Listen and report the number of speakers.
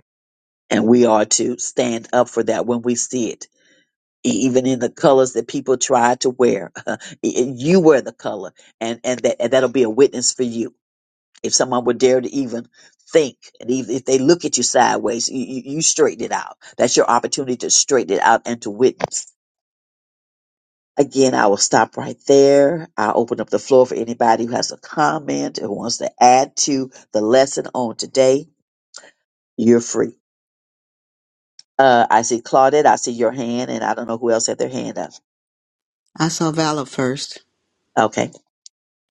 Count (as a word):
two